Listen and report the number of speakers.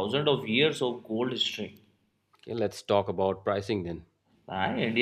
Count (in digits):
2